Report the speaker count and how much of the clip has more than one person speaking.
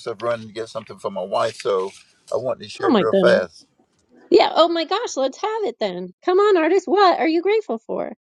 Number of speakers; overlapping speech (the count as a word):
two, about 7%